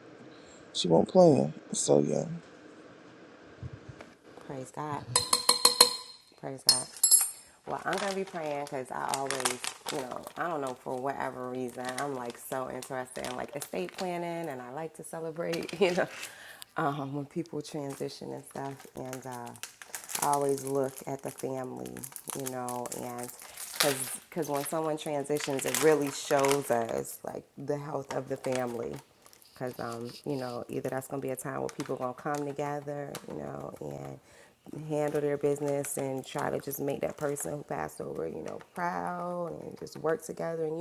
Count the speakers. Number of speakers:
2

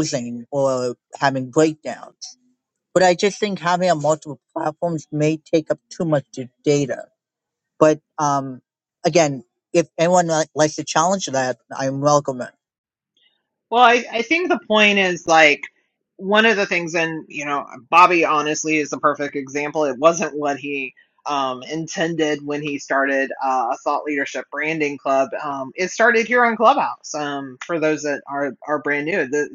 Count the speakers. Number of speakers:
2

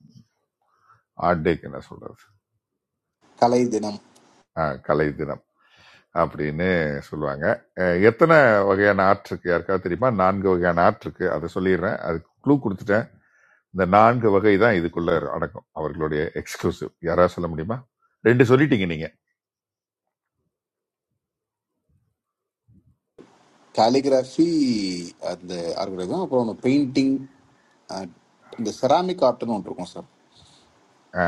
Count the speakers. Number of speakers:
2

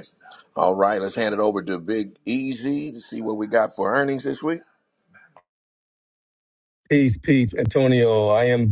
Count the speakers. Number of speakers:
2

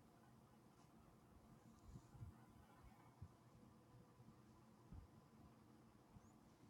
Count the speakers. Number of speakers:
0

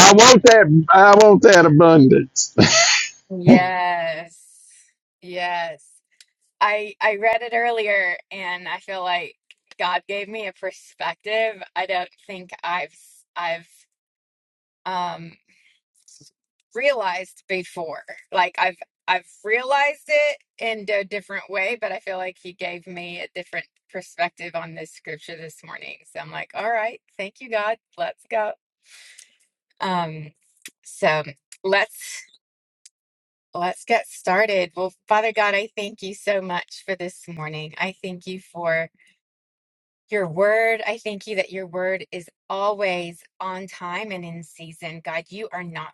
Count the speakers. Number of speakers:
2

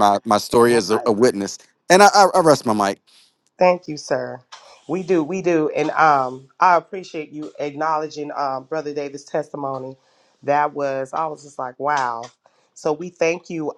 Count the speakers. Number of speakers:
2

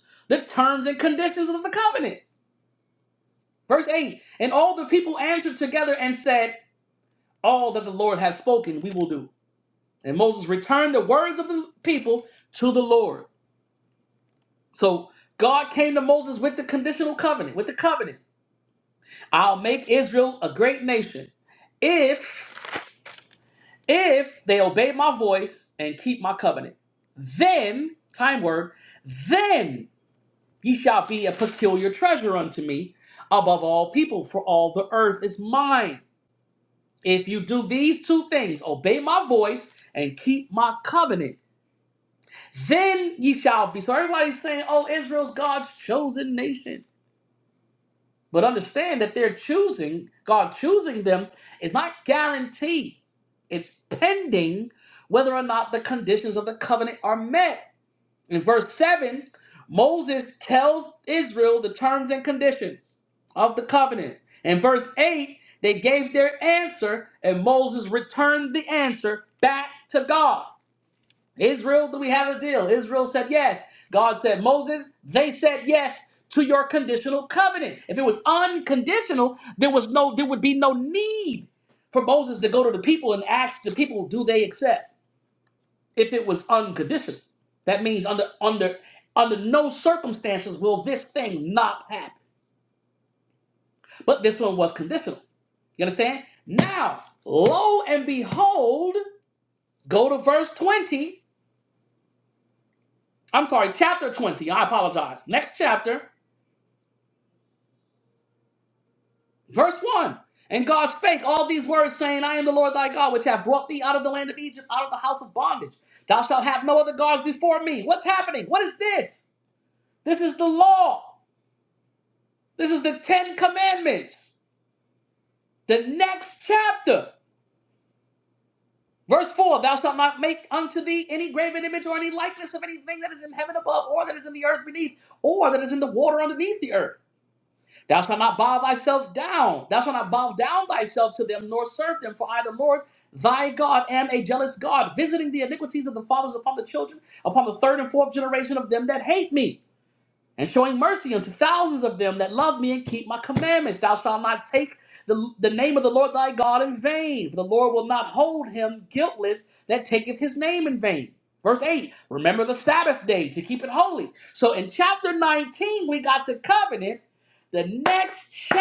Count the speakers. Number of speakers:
1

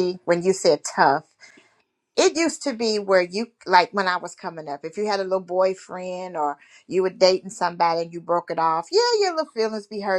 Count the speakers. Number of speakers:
1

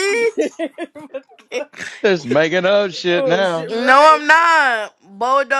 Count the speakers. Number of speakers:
3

